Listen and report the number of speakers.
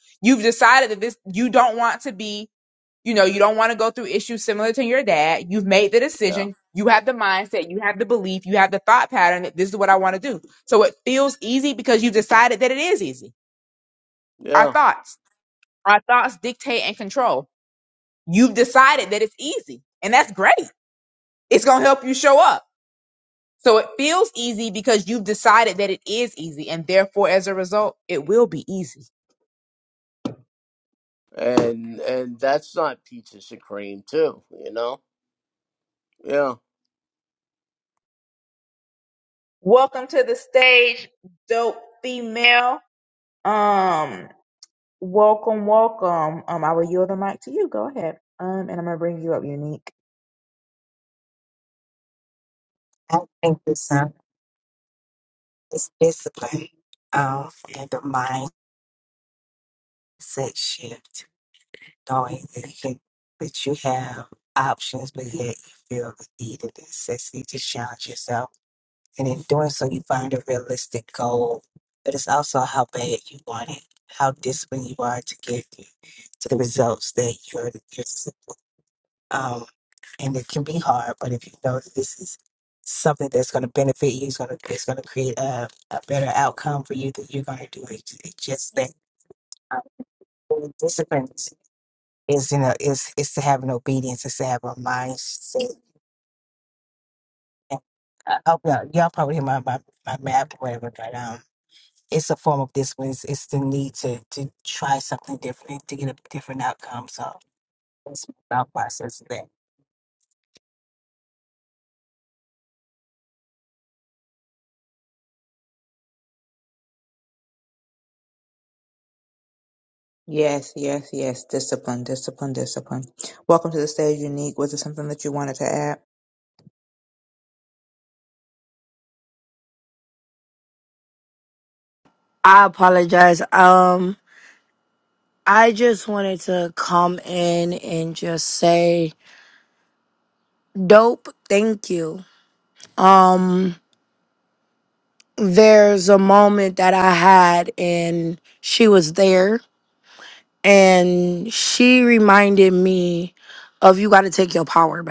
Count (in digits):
4